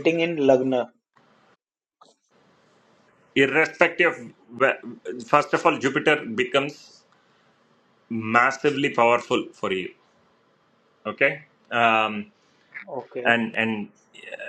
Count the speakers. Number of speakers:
2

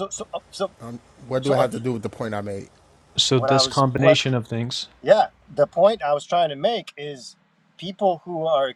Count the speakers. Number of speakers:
3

